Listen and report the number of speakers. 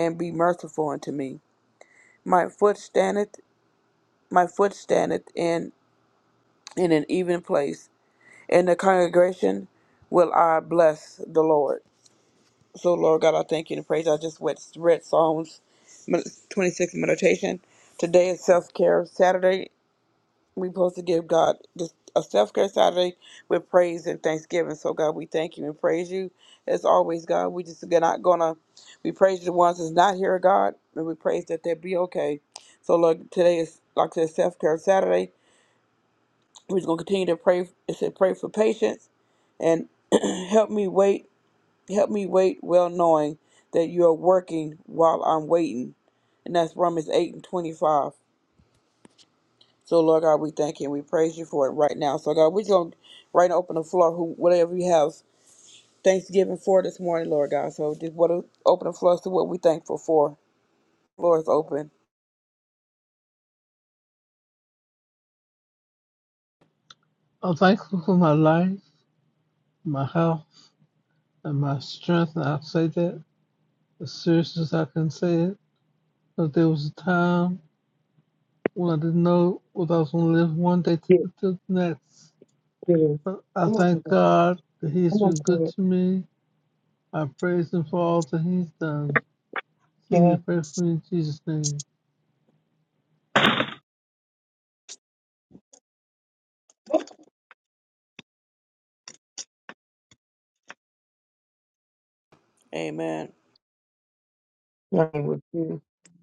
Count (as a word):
three